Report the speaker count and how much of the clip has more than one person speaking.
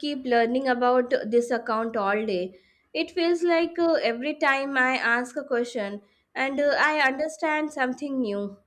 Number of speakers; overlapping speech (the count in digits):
1, no overlap